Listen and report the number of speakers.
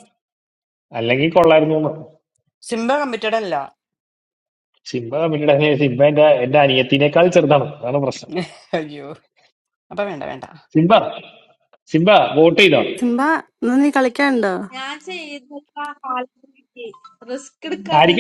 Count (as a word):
four